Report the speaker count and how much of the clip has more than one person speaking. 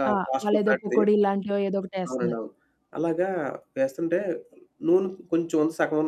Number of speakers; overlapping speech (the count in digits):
2, about 21%